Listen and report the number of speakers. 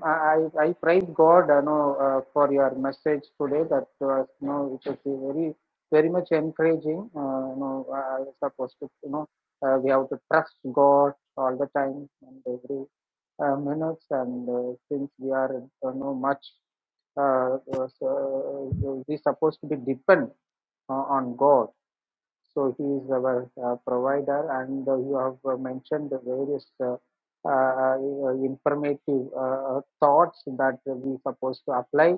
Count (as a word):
one